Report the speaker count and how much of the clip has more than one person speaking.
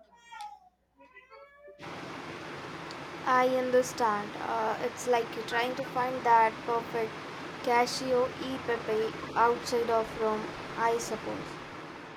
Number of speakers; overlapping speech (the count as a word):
one, no overlap